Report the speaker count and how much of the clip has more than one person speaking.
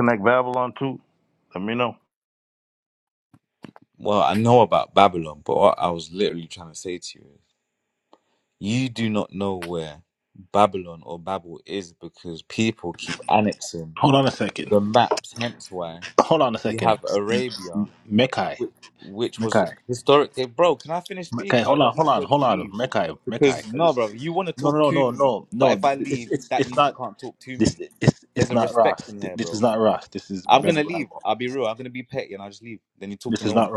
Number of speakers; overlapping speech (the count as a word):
three, about 22%